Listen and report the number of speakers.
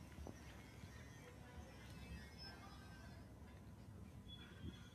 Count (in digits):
0